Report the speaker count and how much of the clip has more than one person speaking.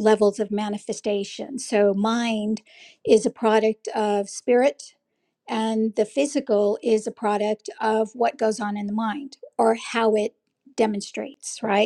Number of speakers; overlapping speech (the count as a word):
one, no overlap